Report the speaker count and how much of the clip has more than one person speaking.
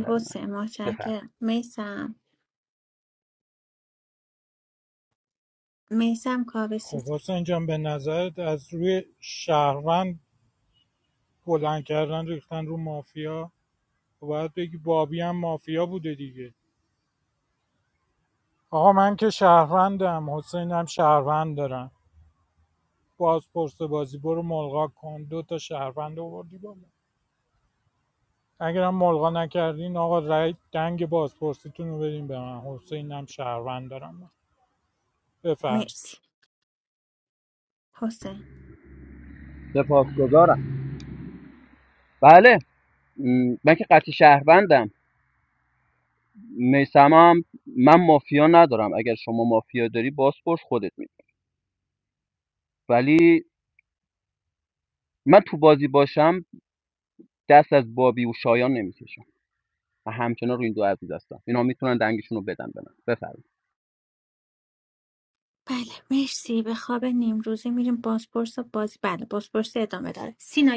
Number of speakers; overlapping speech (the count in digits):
3, about 1%